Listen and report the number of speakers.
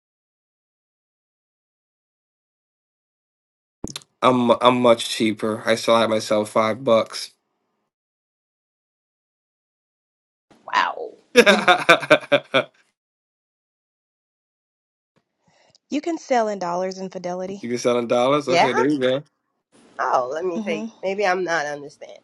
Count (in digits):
3